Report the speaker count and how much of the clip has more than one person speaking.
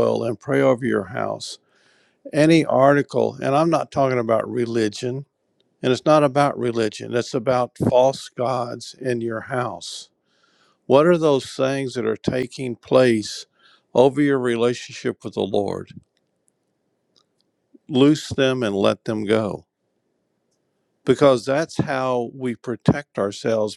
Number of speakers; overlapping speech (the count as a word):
one, no overlap